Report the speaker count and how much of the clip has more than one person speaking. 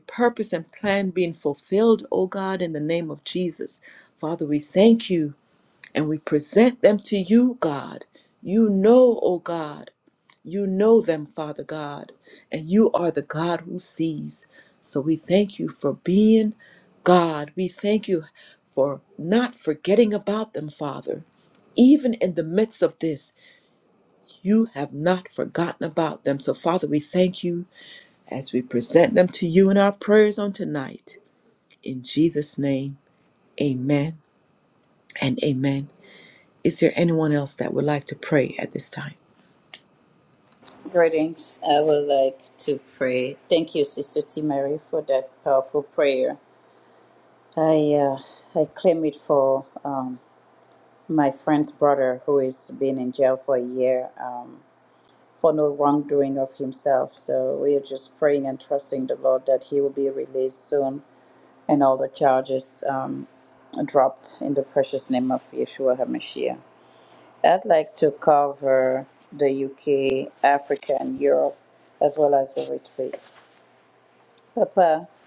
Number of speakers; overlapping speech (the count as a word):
two, no overlap